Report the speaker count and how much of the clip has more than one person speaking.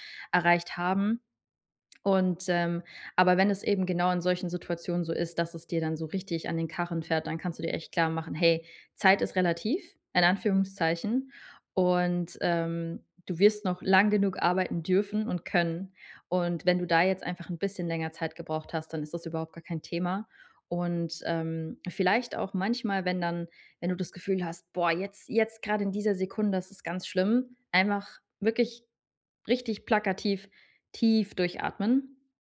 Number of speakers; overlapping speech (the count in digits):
1, no overlap